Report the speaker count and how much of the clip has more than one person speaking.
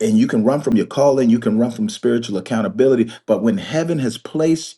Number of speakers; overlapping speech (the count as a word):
one, no overlap